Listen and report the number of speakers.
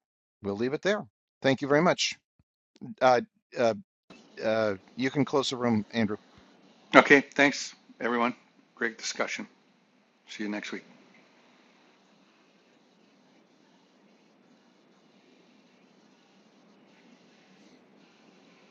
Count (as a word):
two